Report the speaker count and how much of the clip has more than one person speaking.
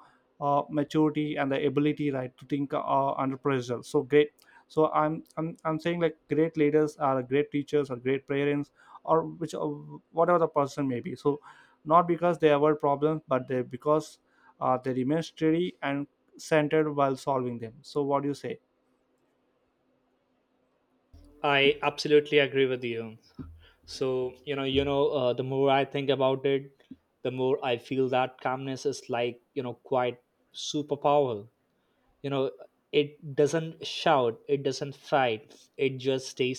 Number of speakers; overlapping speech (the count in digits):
2, no overlap